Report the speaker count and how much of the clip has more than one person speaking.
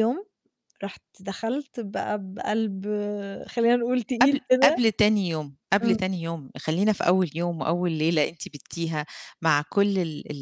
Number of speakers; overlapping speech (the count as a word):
two, about 7%